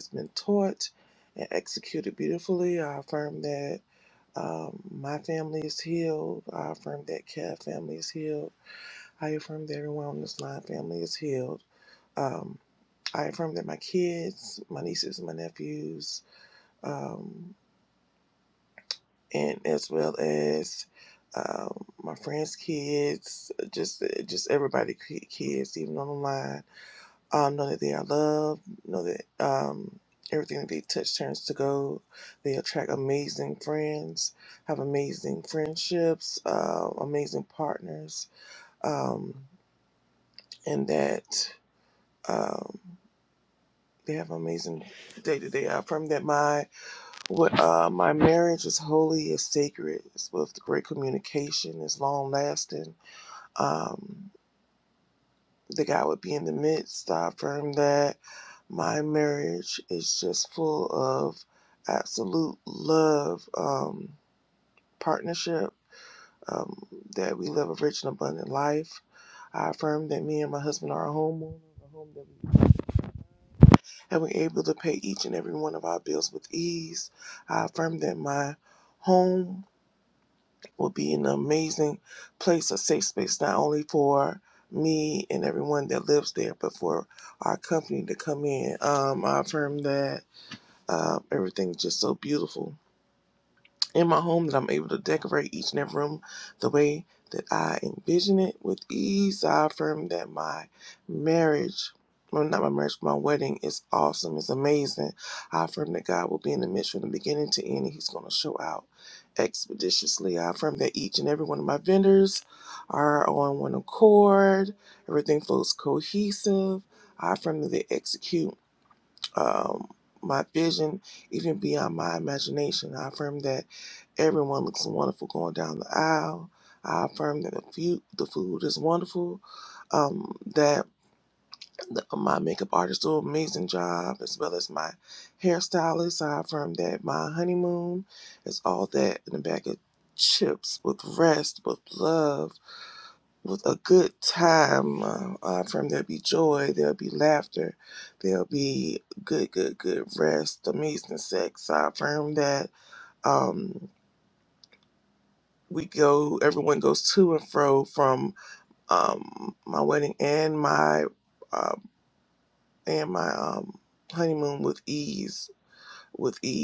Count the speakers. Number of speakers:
one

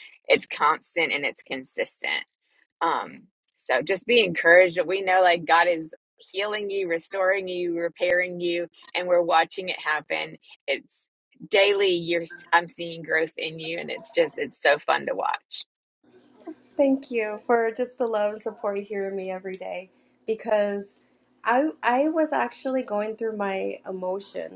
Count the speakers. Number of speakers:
two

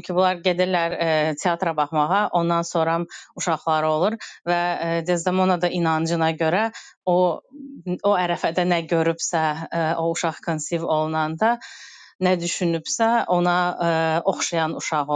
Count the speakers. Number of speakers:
one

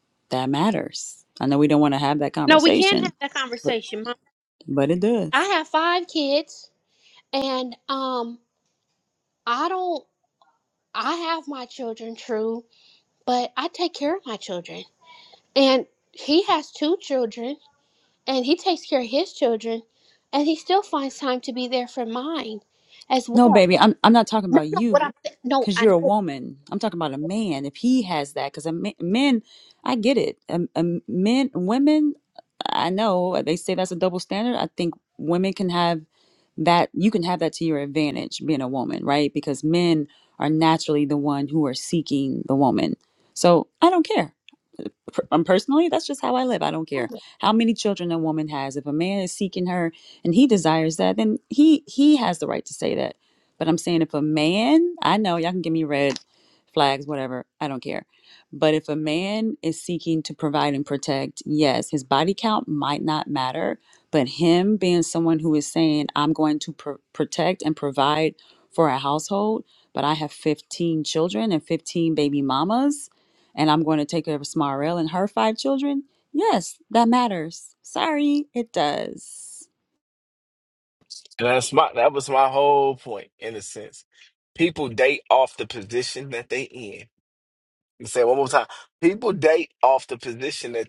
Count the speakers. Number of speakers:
three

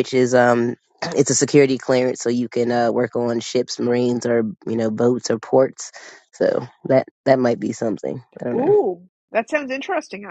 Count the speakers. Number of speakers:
two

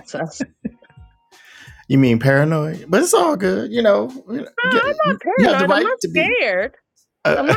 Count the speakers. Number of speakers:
two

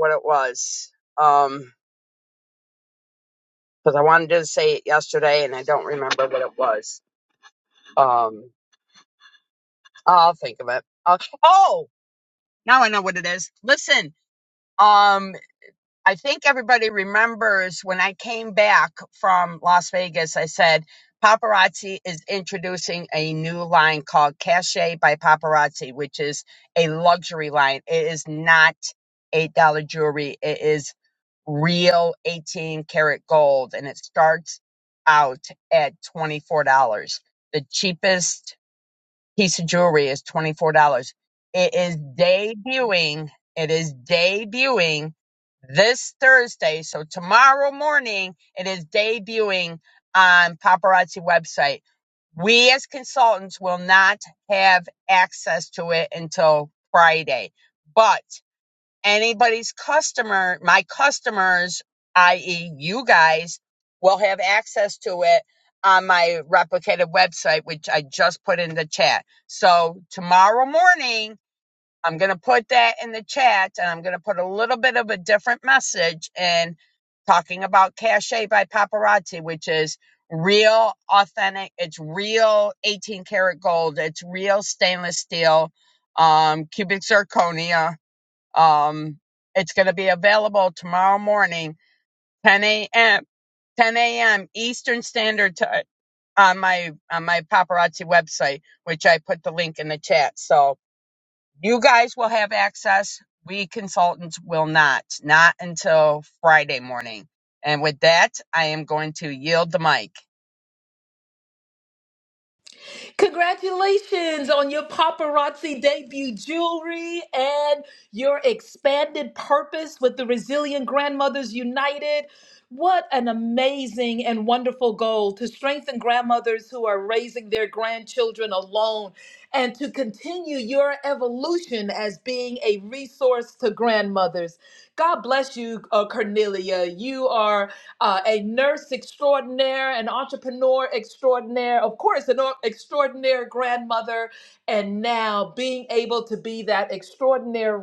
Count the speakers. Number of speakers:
two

